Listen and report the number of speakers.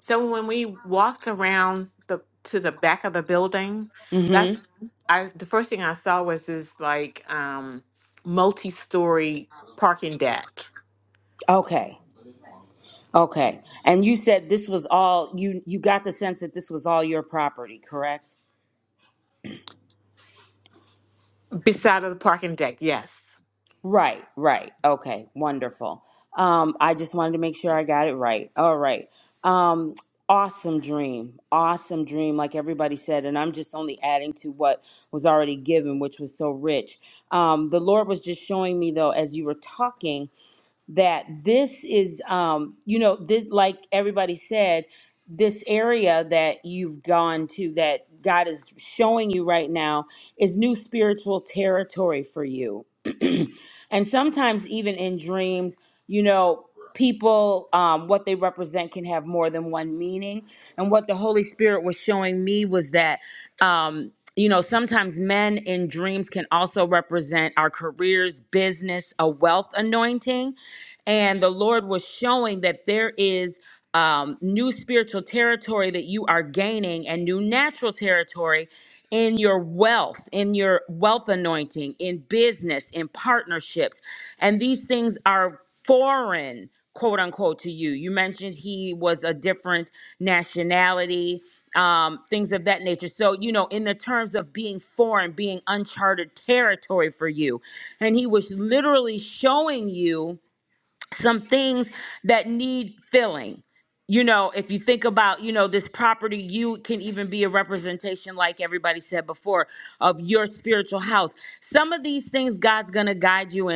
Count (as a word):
two